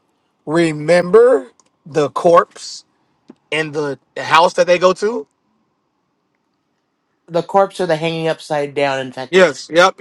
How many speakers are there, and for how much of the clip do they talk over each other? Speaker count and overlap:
two, about 1%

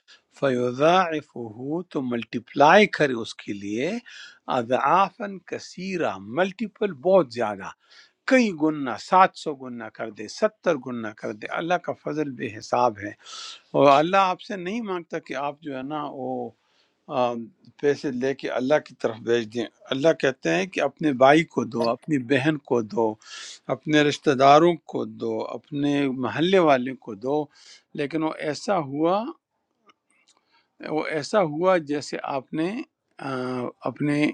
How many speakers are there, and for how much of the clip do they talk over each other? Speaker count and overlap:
one, no overlap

